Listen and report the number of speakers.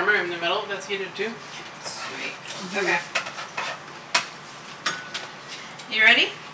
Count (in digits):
2